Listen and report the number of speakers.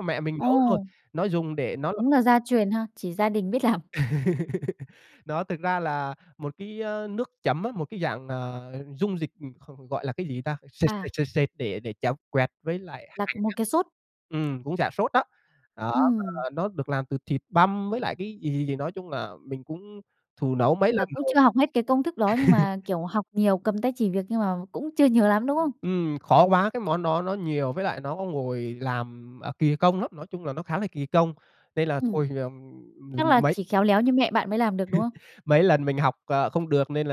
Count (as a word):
two